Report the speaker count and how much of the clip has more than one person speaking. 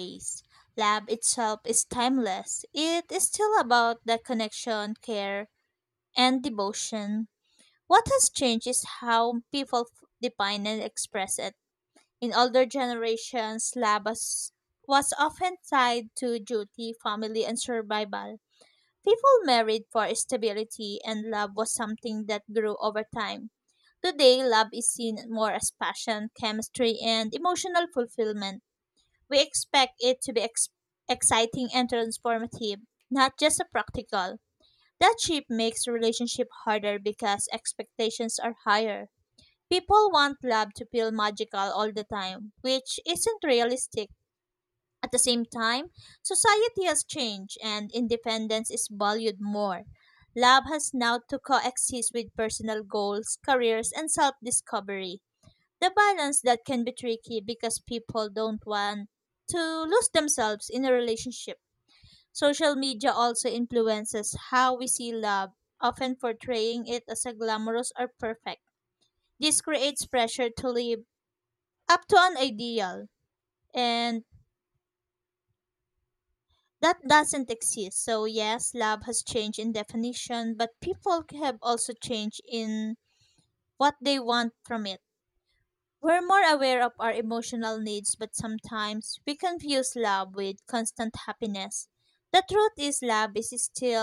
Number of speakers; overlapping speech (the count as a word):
one, no overlap